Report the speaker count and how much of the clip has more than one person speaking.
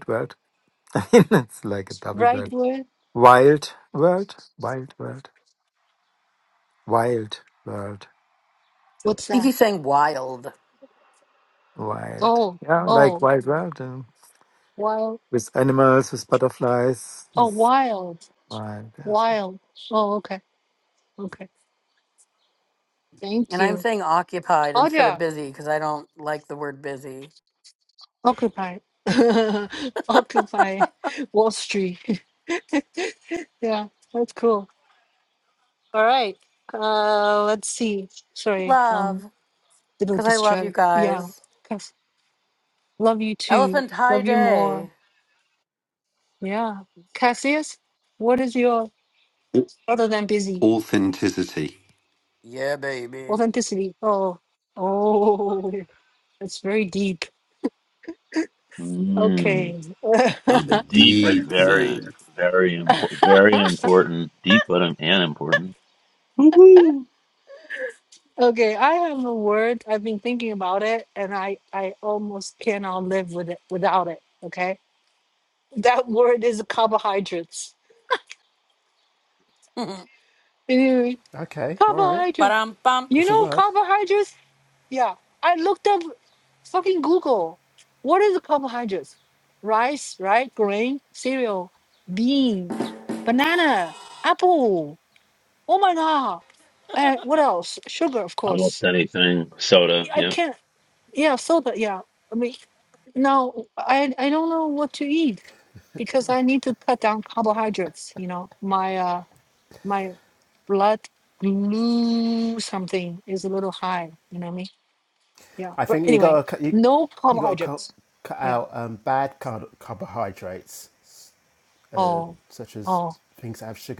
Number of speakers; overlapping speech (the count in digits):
6, about 8%